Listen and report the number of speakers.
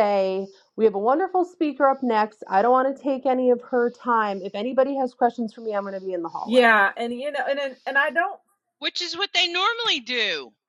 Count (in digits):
3